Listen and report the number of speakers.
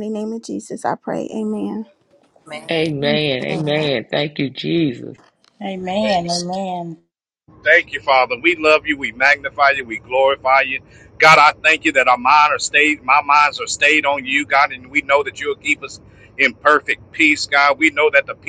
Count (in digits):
4